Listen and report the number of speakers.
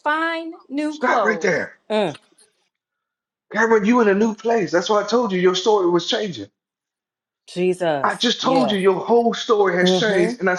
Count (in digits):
3